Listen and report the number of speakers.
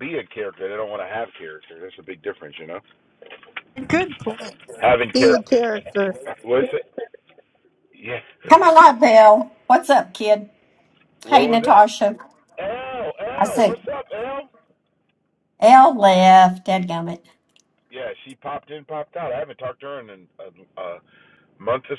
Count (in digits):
3